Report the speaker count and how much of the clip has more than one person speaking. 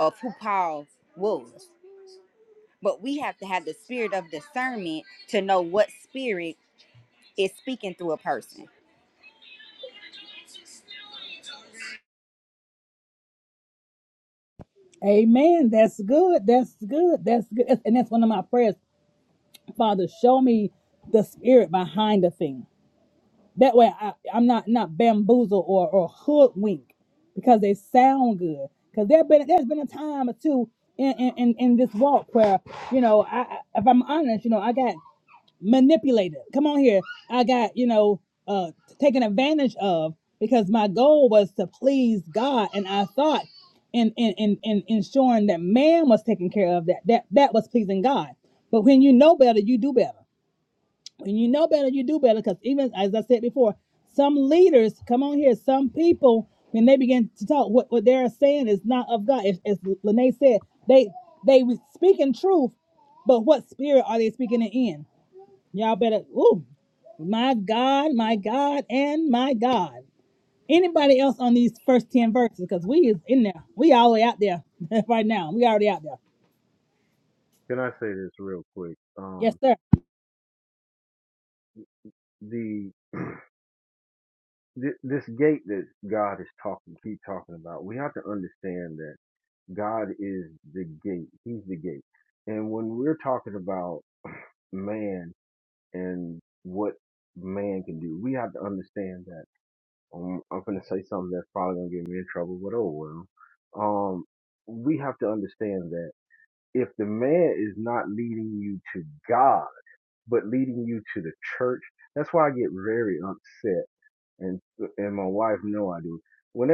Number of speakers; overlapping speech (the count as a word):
three, under 1%